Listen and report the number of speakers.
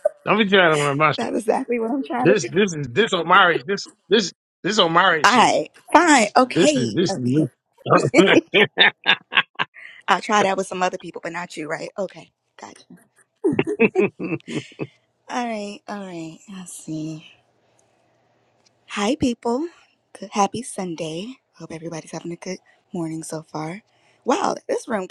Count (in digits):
2